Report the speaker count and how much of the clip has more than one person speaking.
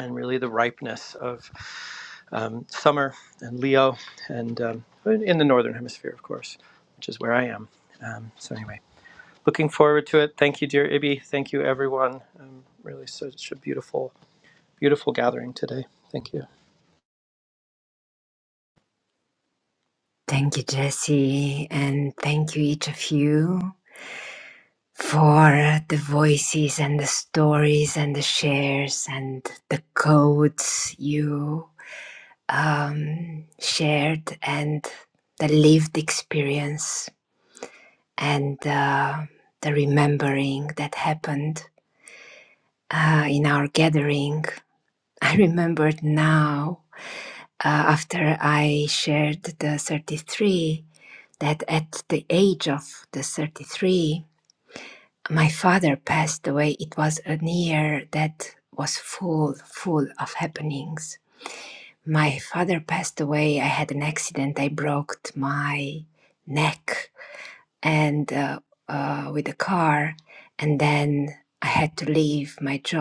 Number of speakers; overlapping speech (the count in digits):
2, no overlap